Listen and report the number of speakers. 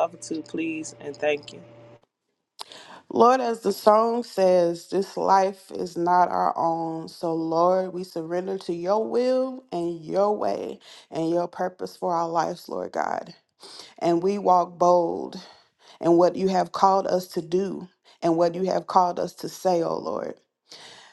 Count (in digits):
2